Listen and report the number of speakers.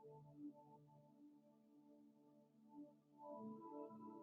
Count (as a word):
zero